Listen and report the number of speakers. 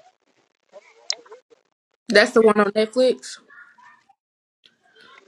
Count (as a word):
one